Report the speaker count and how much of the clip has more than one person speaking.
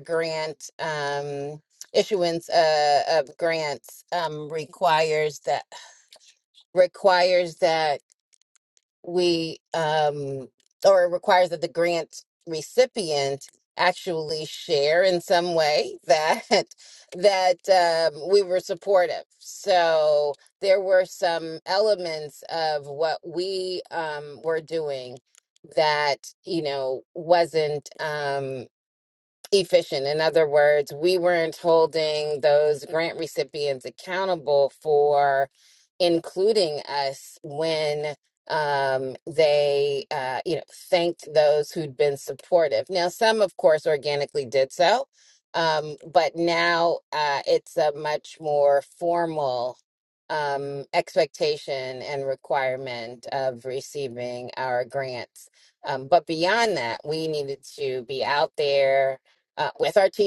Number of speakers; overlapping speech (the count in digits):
1, no overlap